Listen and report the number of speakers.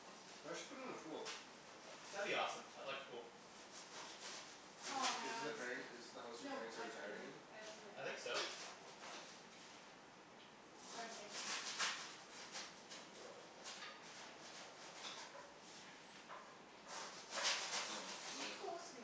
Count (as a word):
three